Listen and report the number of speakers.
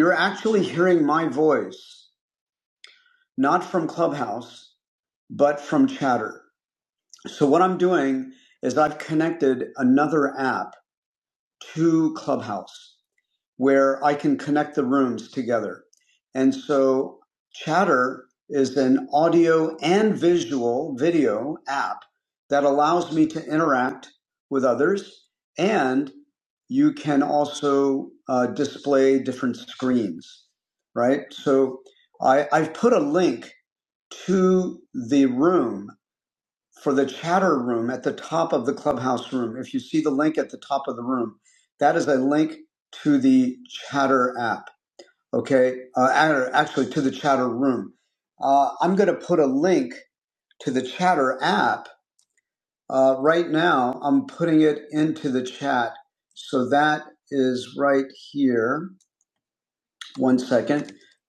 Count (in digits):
1